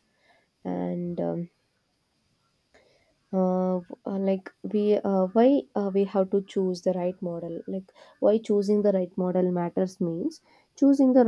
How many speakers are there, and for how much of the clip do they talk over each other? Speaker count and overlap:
one, no overlap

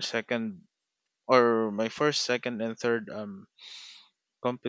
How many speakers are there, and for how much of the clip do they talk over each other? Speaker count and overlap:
one, no overlap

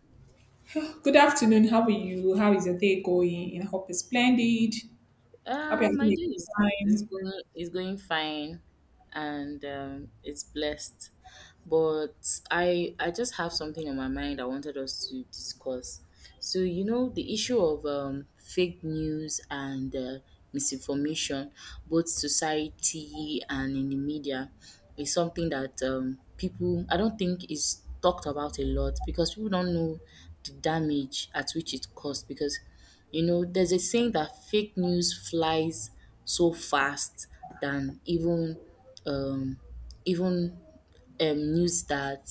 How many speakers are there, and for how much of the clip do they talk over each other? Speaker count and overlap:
two, about 2%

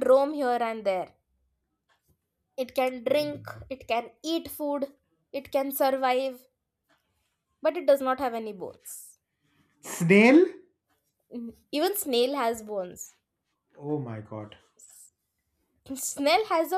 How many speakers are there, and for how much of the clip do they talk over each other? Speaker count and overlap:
two, about 1%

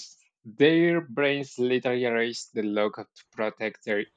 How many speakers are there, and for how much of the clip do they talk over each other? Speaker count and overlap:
one, no overlap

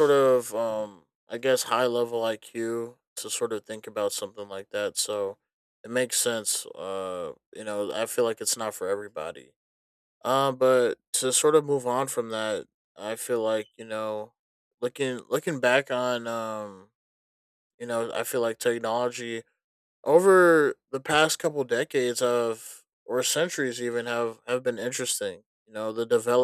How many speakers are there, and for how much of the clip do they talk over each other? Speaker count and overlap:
one, no overlap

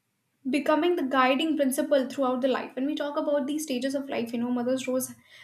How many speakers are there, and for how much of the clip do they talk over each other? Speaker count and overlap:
one, no overlap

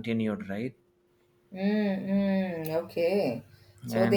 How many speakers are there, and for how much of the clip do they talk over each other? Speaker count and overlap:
two, about 6%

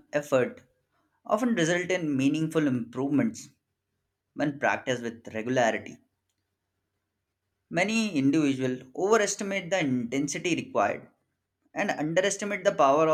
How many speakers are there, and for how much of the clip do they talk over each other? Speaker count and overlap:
one, no overlap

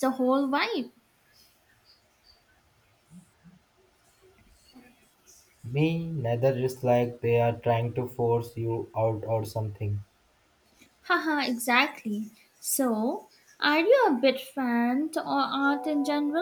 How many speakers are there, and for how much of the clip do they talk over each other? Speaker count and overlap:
two, no overlap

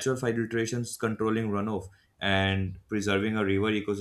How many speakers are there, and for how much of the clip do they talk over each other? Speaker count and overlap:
one, no overlap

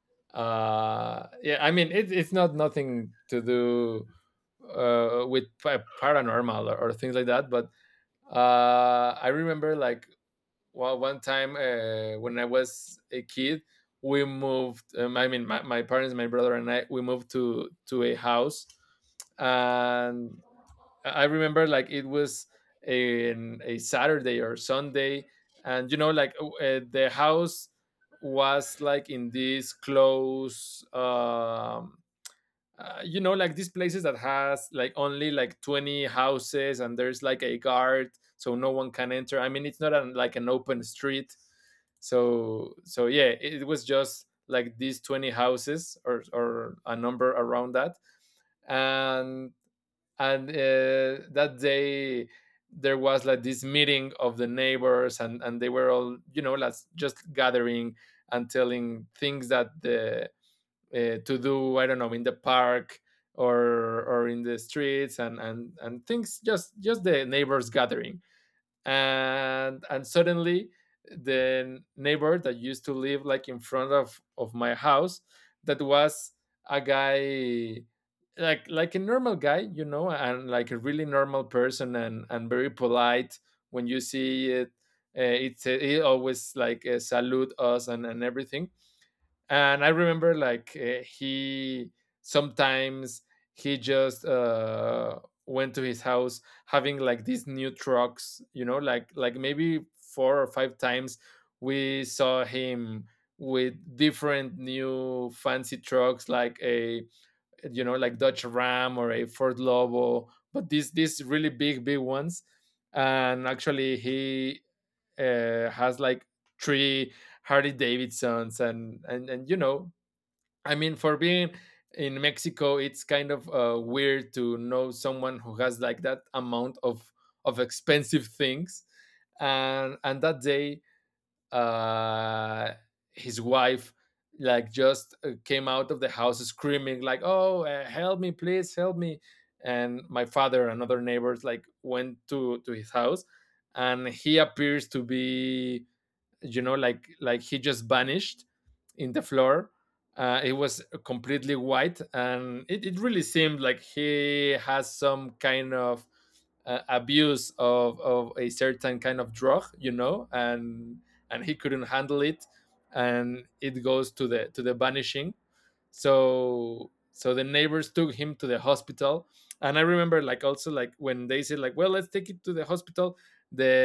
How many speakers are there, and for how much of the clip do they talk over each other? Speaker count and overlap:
one, no overlap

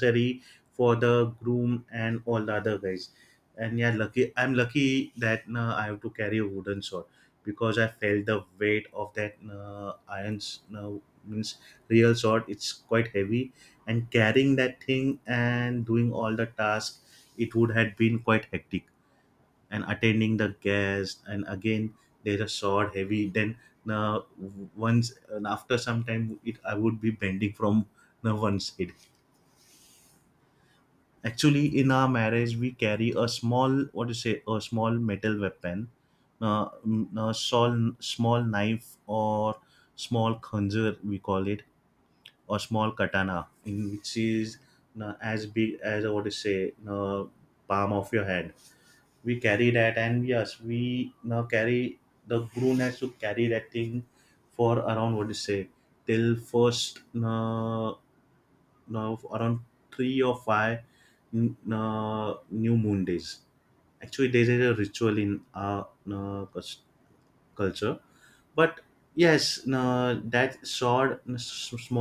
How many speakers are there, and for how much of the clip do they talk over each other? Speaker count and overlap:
one, no overlap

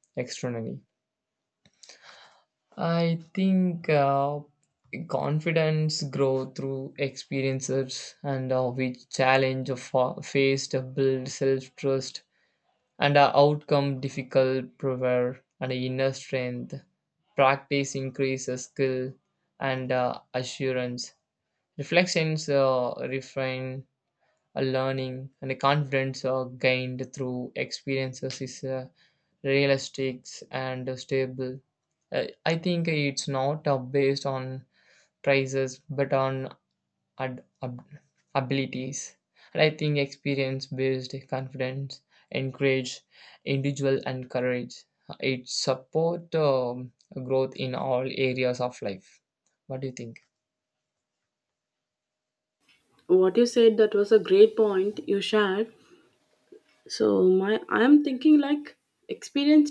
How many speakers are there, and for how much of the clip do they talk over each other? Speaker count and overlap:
two, no overlap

